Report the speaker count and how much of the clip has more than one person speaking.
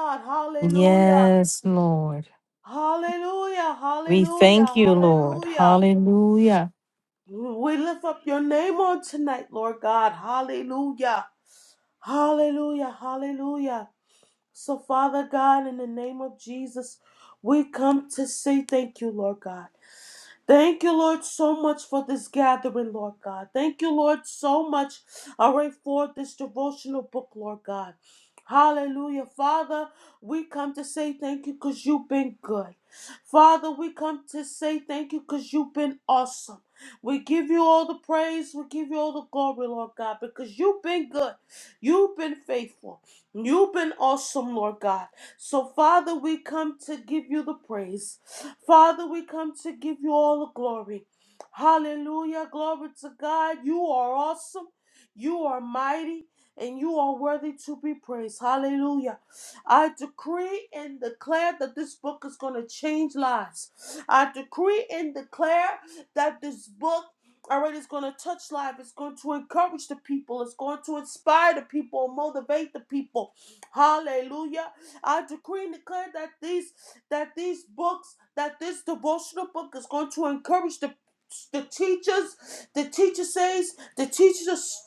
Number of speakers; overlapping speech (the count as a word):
two, about 3%